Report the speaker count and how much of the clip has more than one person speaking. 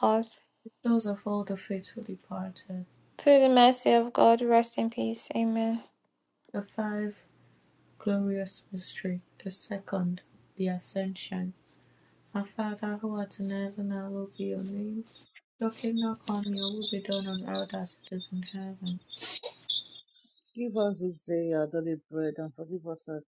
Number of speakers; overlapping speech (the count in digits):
3, no overlap